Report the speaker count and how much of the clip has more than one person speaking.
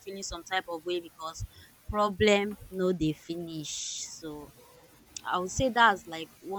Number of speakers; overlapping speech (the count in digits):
1, no overlap